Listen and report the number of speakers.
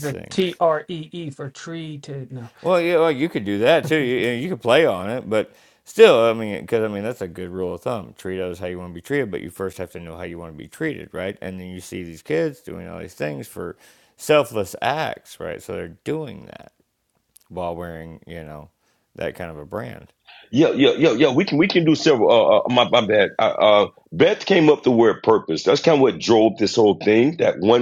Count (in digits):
3